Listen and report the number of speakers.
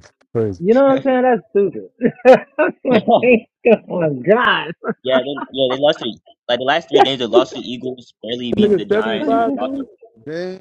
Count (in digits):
3